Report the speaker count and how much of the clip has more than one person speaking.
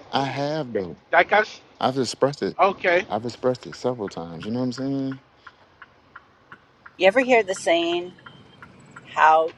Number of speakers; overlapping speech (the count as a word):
three, about 3%